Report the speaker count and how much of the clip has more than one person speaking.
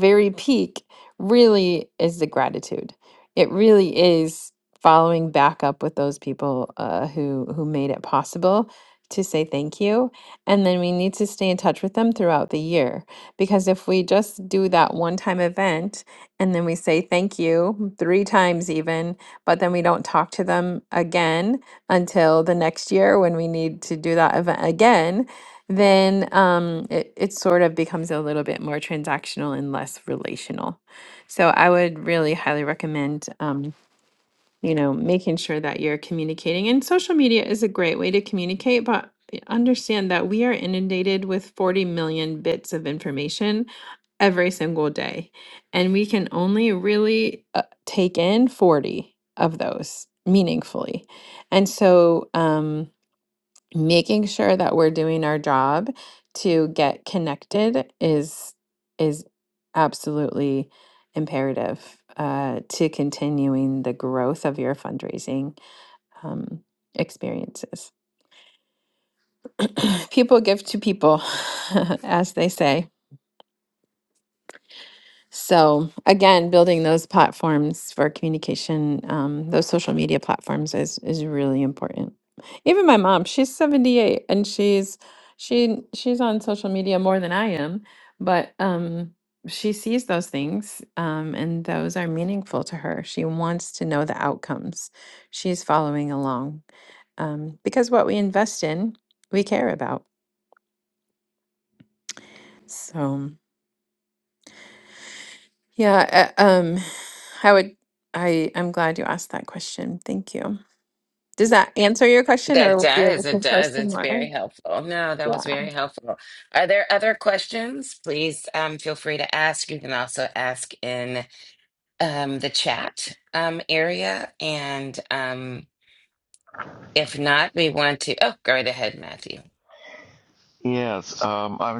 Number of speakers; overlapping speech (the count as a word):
three, about 2%